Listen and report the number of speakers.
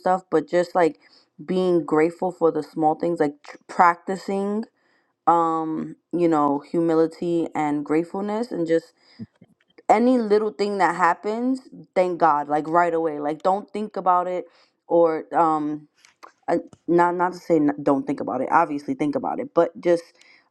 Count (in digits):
1